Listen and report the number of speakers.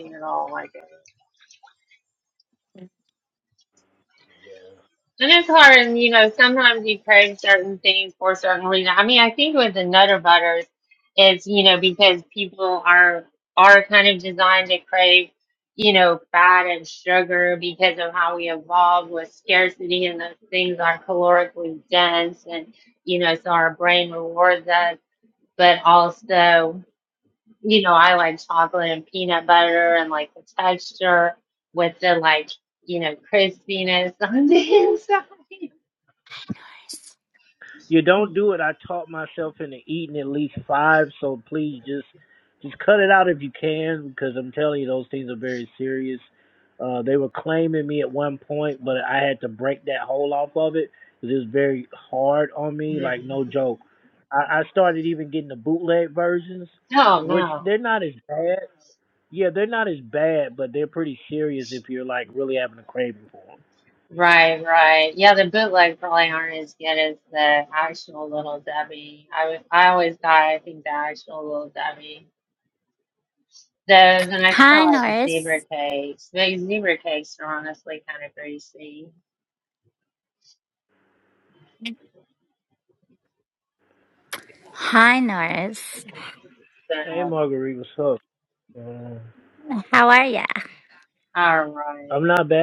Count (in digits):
3